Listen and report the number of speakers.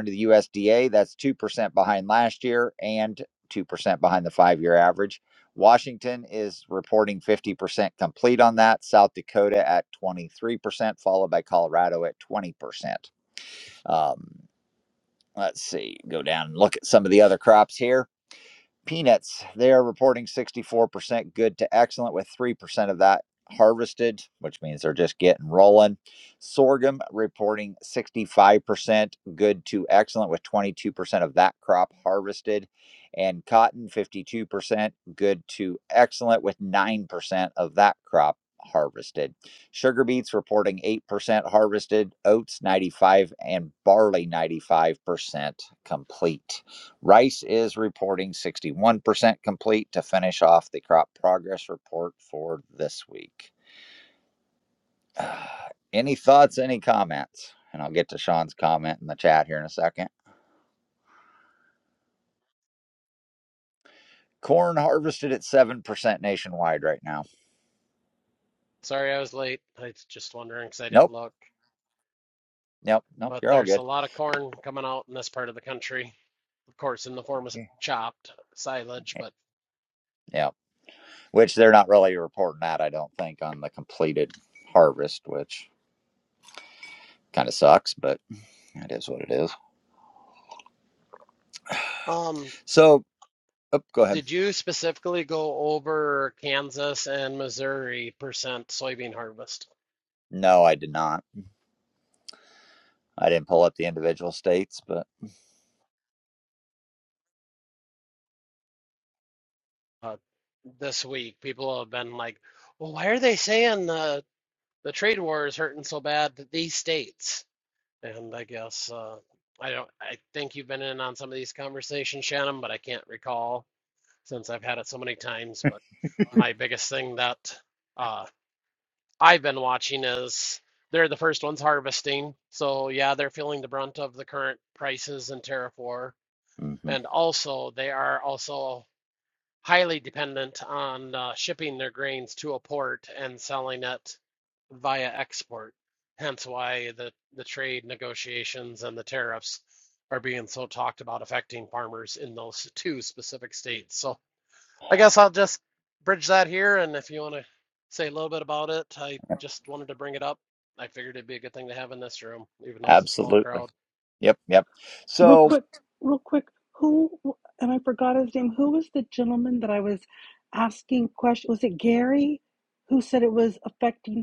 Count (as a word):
three